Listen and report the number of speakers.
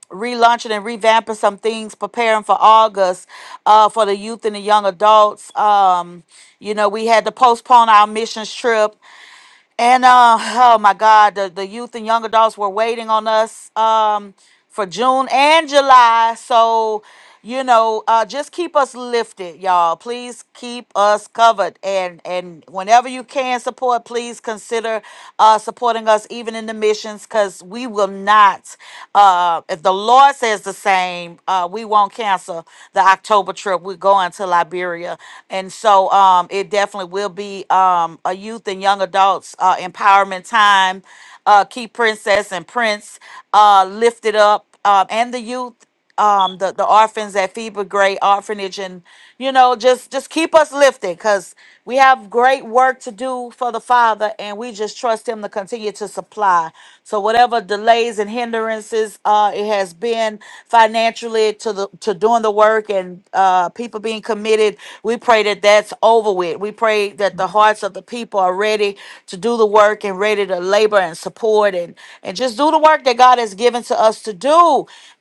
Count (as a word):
one